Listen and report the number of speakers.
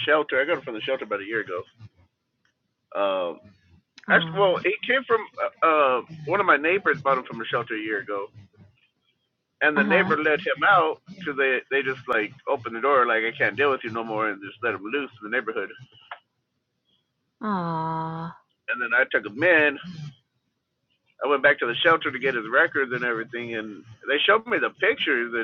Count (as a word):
two